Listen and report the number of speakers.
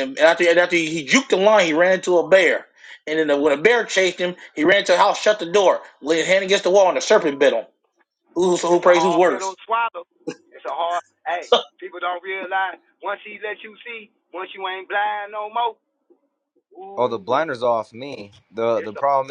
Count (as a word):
three